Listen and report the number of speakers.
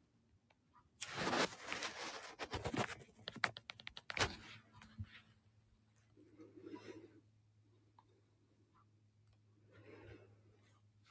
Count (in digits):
0